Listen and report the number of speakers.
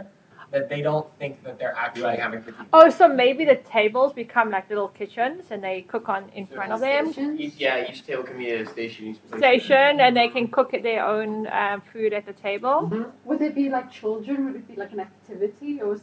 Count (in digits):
4